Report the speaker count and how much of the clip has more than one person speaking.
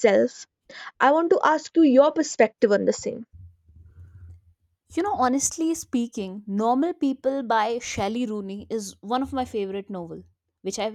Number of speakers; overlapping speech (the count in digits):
2, no overlap